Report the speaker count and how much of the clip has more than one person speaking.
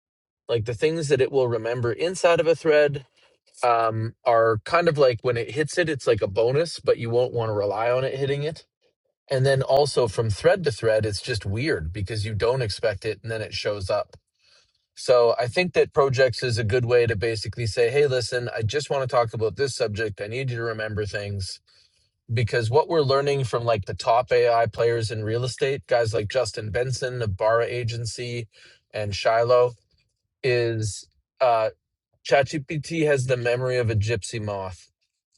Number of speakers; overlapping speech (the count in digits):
1, no overlap